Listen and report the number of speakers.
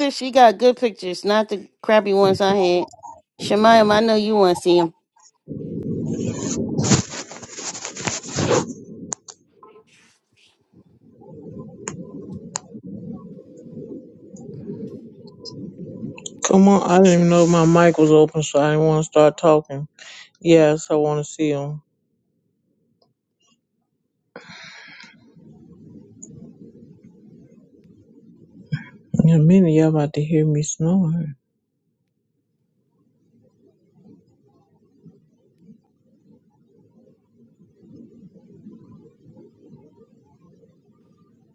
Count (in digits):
2